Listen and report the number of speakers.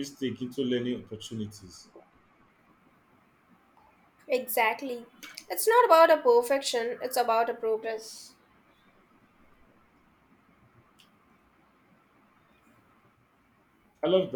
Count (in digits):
2